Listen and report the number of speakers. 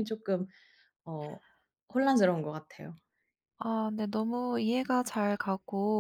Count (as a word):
two